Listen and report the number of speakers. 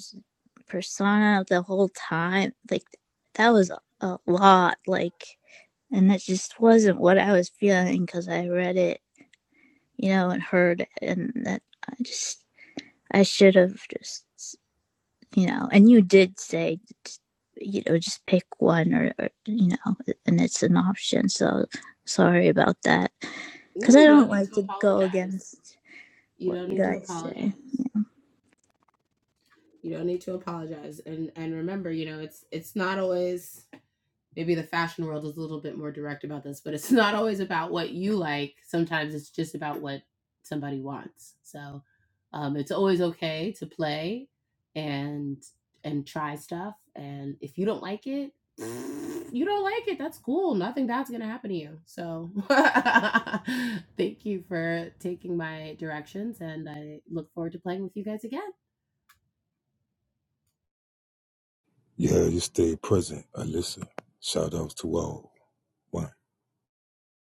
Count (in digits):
3